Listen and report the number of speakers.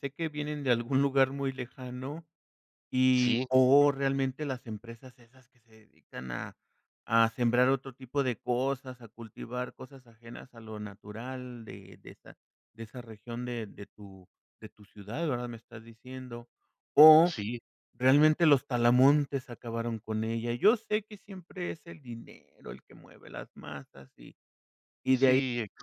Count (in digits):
2